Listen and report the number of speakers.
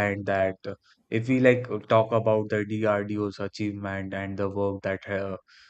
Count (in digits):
1